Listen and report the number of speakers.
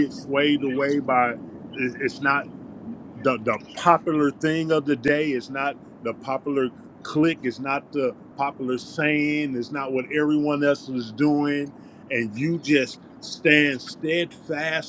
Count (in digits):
1